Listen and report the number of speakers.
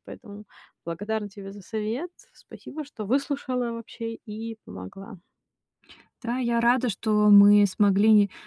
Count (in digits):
2